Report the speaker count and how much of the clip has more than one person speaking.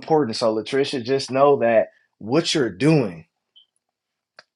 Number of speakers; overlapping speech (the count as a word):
one, no overlap